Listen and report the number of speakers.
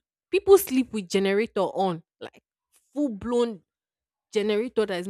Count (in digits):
1